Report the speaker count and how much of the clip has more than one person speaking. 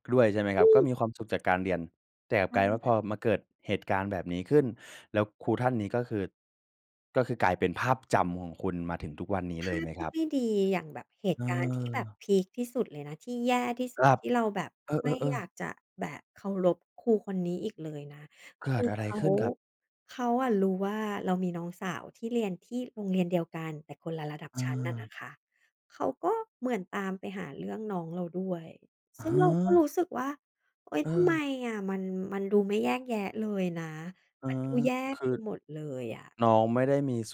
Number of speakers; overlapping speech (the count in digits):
2, about 11%